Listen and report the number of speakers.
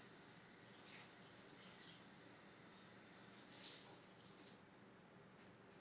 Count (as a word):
zero